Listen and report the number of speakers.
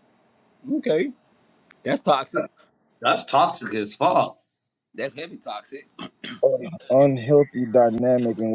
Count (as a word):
three